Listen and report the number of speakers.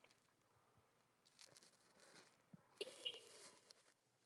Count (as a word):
zero